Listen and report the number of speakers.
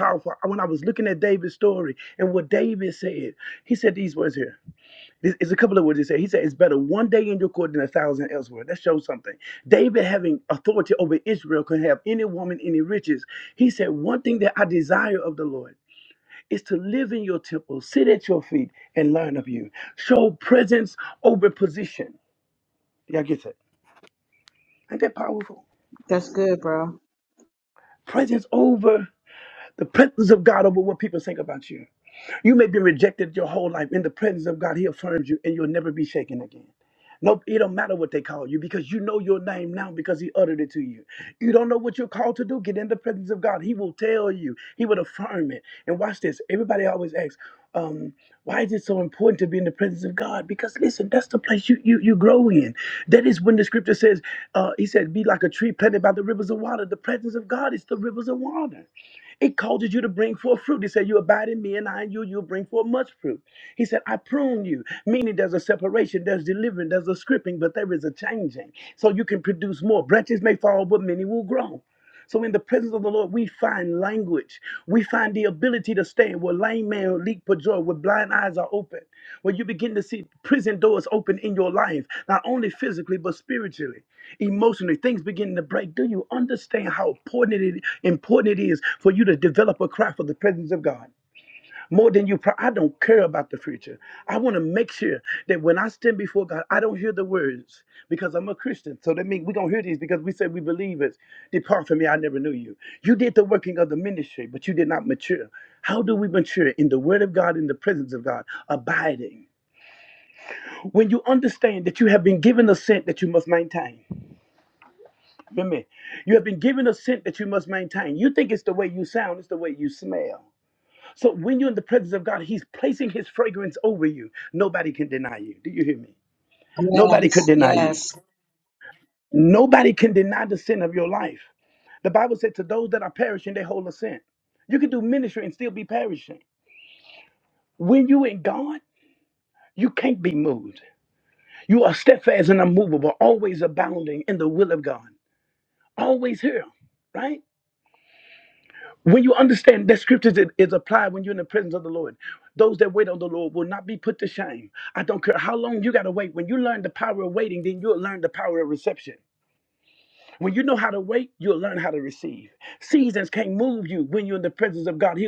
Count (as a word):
two